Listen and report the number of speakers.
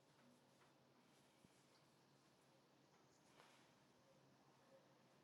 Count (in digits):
0